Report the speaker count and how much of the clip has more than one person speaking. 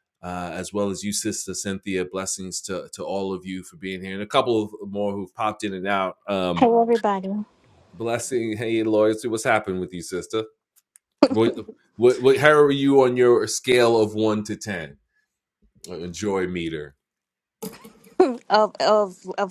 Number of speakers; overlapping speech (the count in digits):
2, under 1%